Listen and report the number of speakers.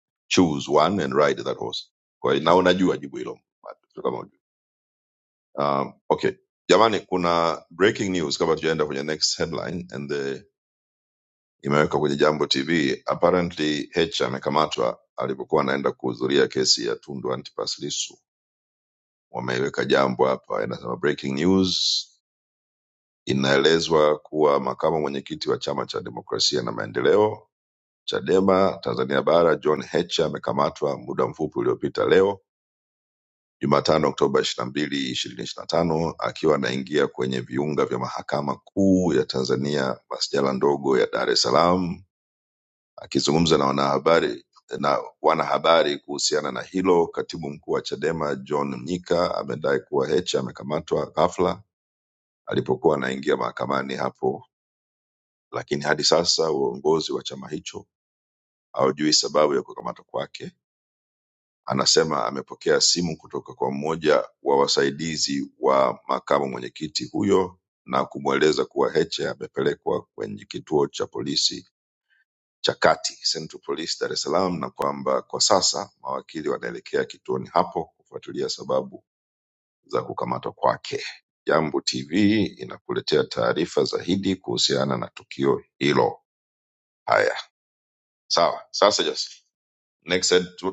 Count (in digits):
1